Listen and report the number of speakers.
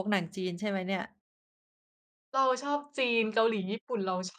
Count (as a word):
two